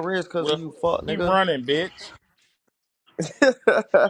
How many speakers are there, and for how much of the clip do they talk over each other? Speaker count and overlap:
2, about 11%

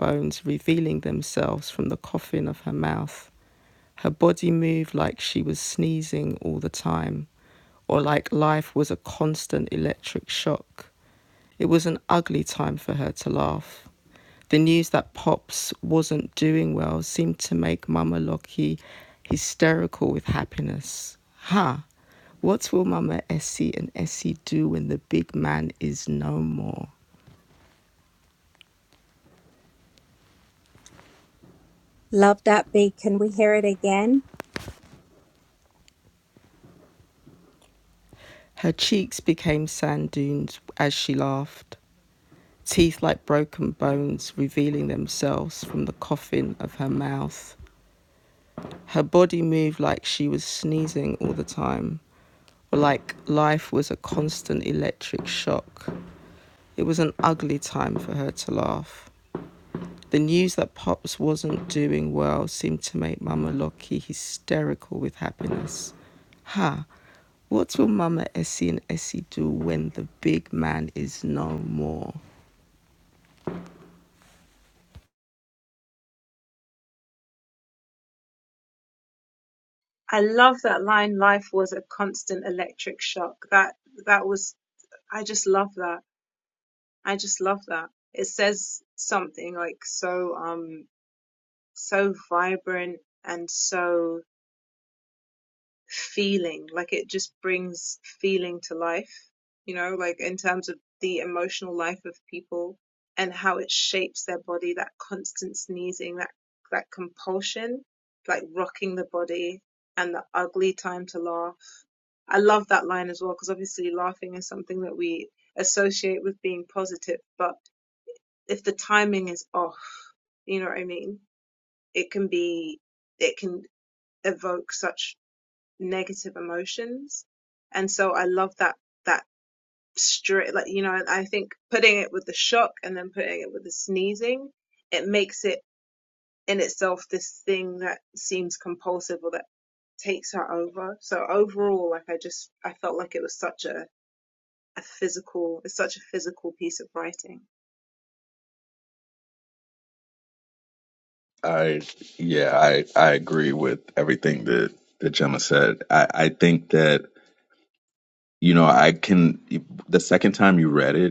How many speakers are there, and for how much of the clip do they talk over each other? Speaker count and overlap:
4, no overlap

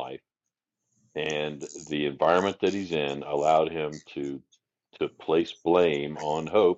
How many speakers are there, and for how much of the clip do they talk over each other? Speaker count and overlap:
1, no overlap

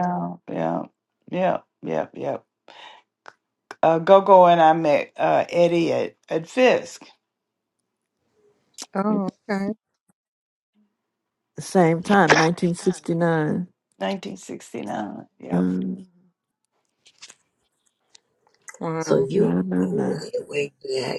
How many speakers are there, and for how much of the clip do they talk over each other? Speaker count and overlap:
4, about 6%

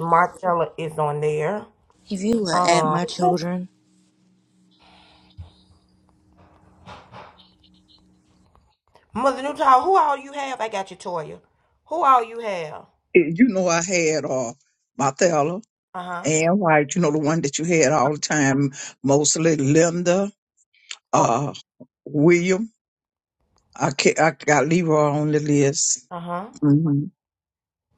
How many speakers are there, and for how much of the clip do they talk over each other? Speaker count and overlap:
3, about 3%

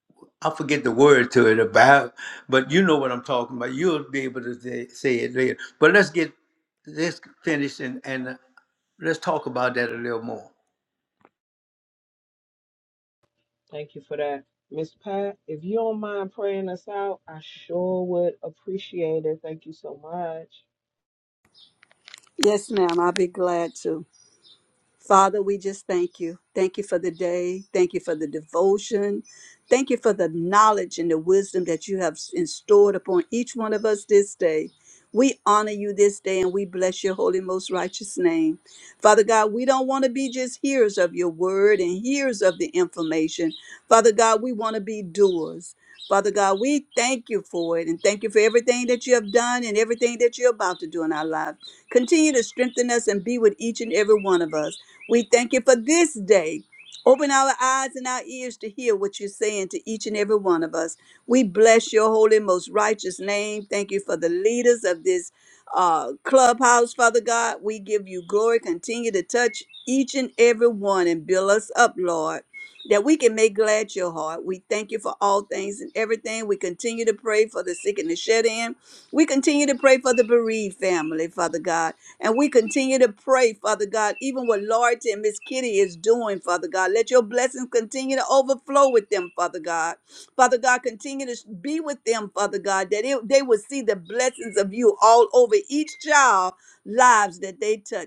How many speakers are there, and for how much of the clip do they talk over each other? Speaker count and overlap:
3, no overlap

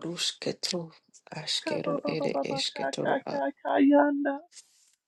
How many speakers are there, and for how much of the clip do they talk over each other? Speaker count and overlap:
2, about 35%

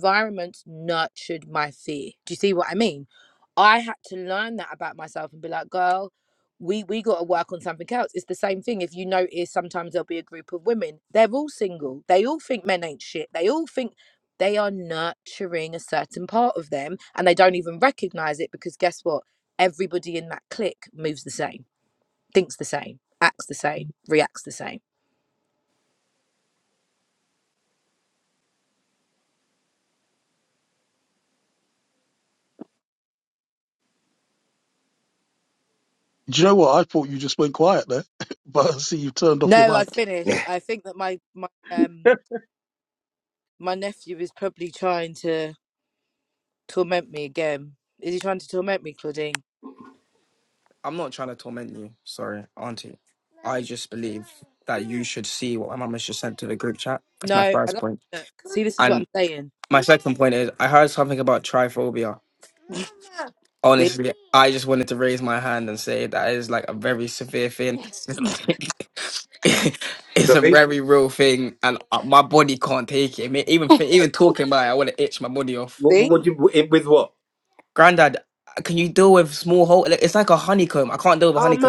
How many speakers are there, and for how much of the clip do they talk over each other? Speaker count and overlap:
4, about 3%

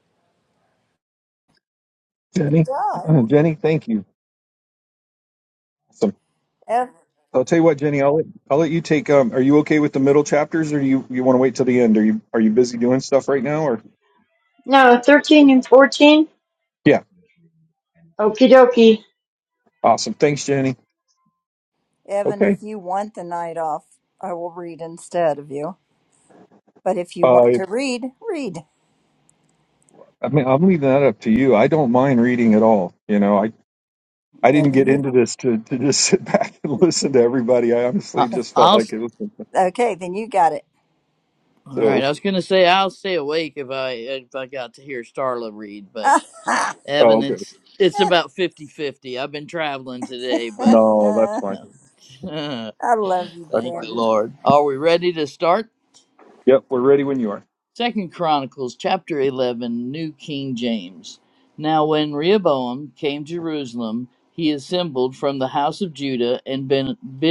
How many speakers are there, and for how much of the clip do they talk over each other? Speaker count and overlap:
4, about 5%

